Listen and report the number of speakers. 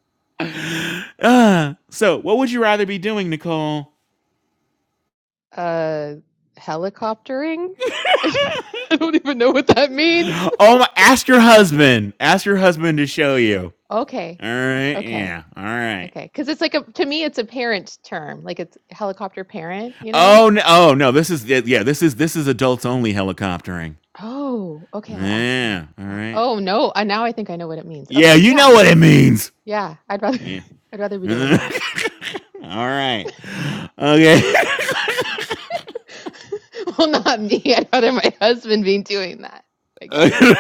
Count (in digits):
2